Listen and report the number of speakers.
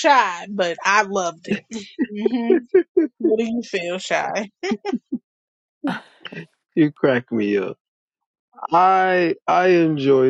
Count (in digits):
2